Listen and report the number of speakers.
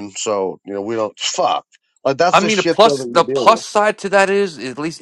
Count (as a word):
two